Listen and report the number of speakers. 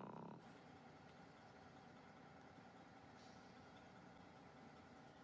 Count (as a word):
zero